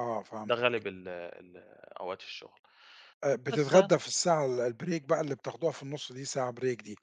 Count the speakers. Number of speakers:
2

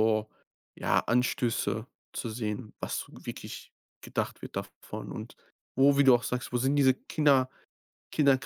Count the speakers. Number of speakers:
1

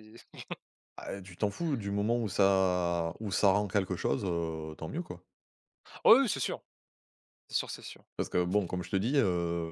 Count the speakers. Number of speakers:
2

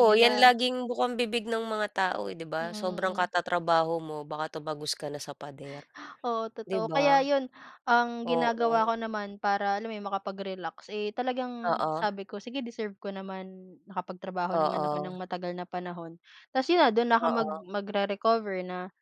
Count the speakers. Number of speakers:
2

